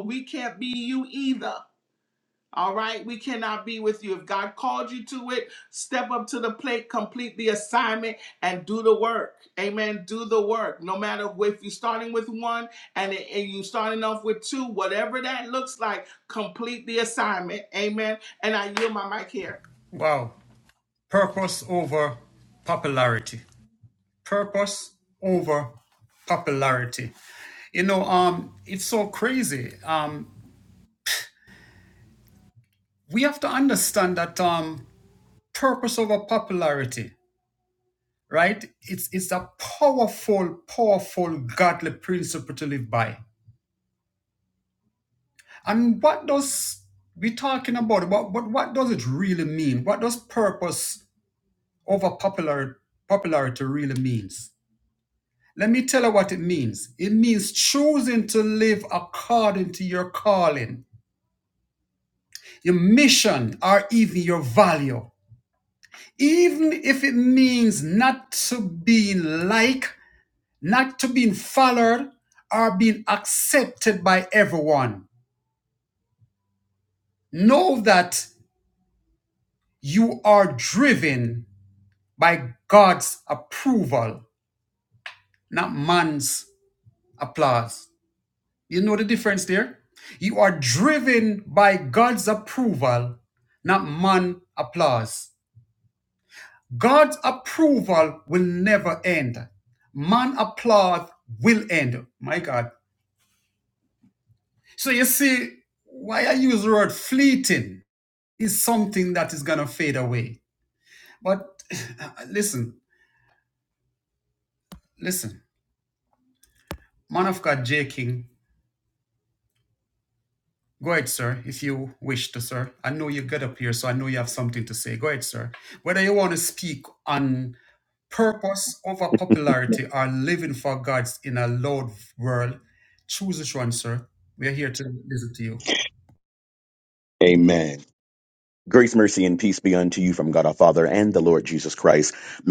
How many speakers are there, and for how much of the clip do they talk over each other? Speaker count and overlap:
3, no overlap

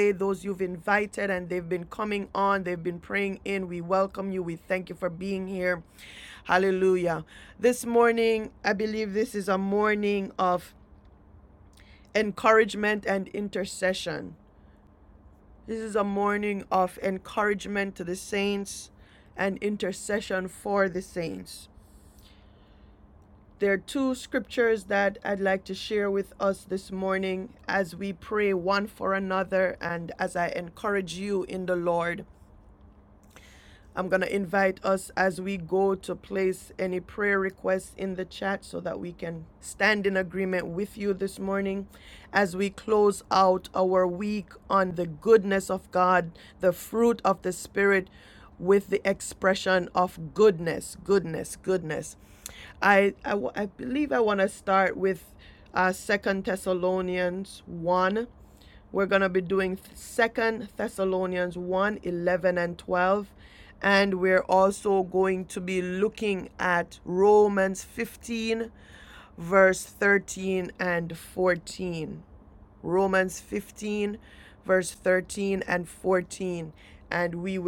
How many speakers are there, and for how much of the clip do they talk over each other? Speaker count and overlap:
1, no overlap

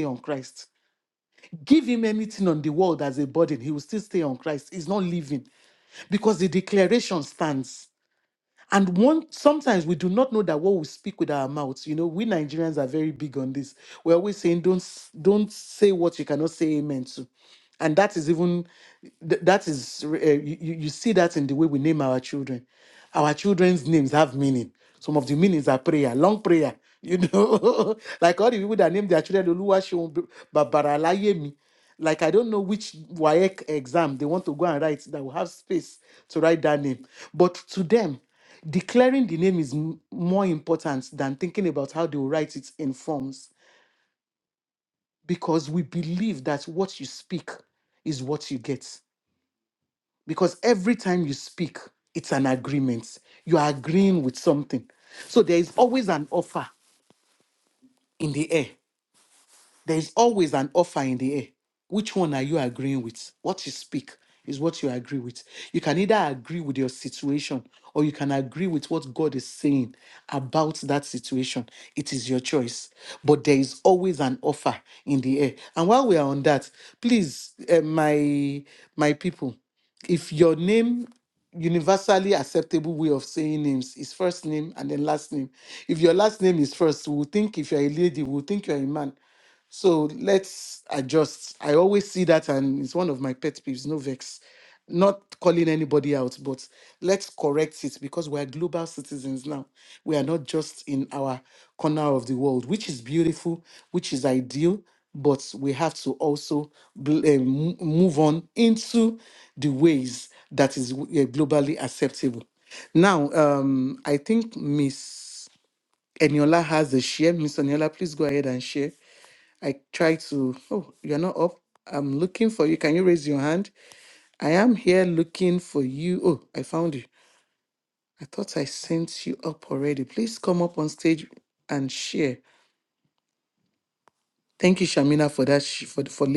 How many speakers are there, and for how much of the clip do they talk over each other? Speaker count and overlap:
1, no overlap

